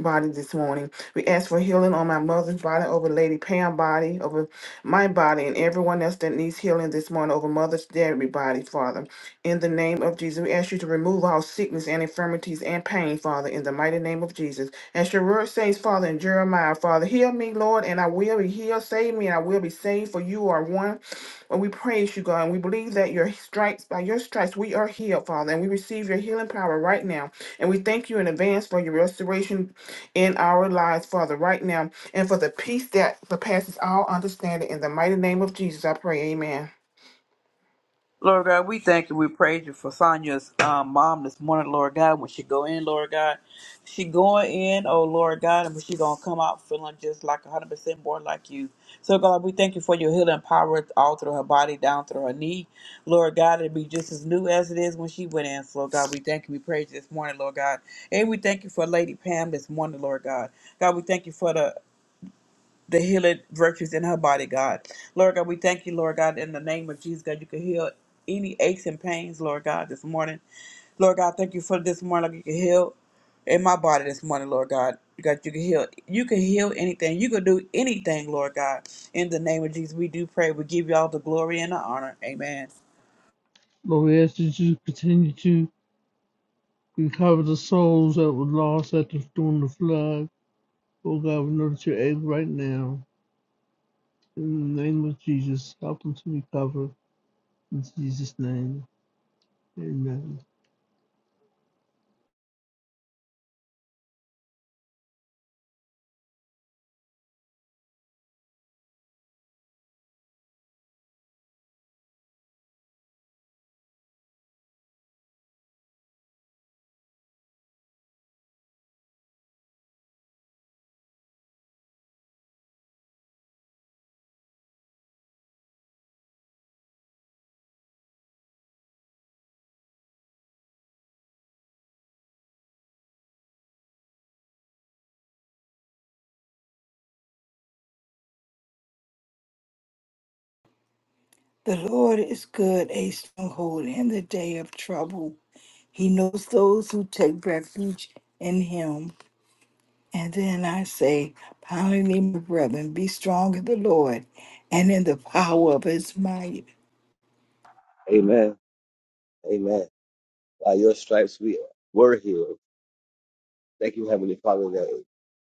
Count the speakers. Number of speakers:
five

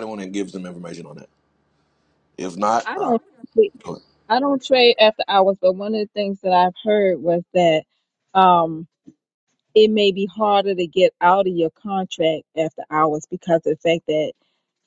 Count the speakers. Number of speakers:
two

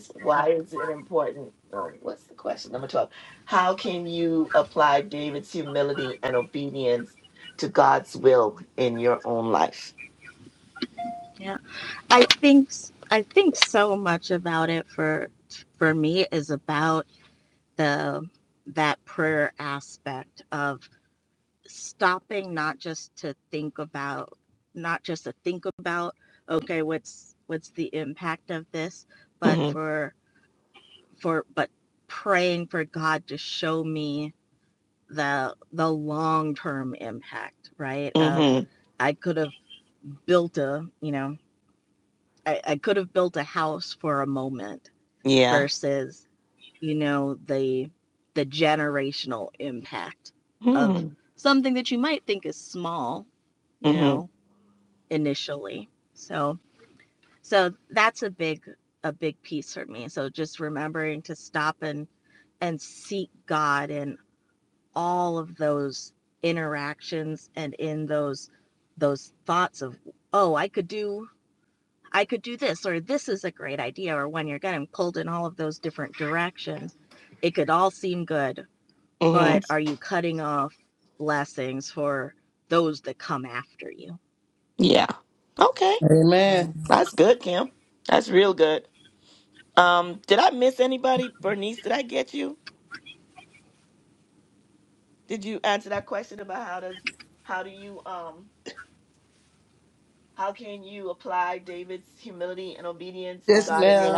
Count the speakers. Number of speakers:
three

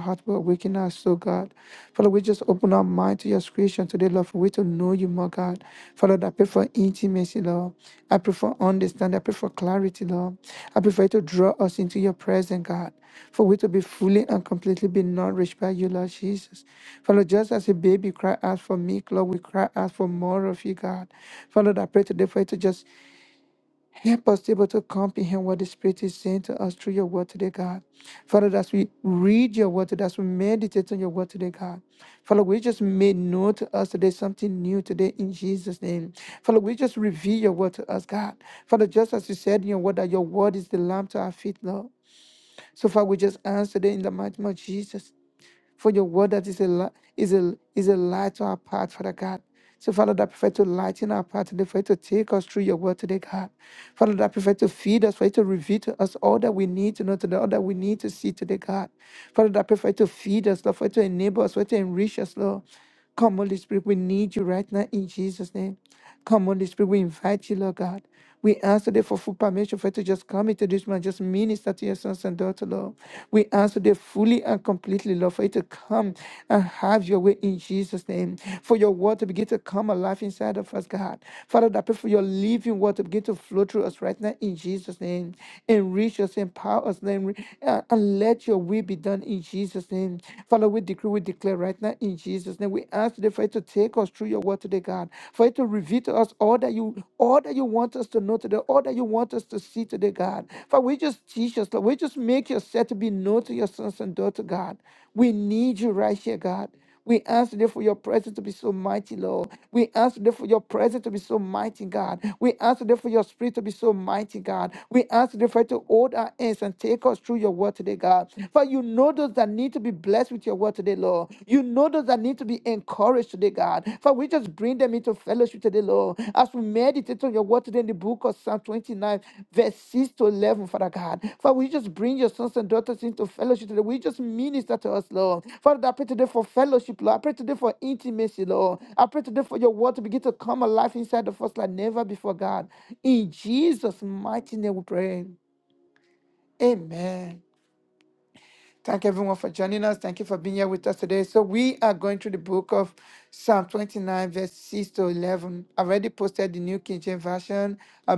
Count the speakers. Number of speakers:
one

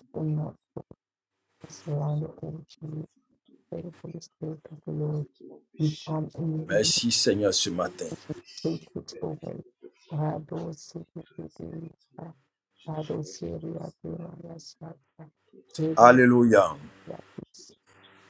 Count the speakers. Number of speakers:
three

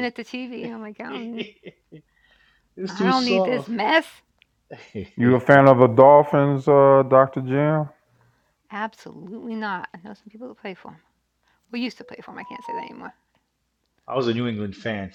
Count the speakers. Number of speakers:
three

